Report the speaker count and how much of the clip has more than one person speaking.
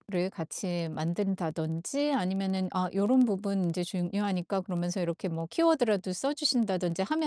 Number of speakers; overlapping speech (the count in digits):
1, no overlap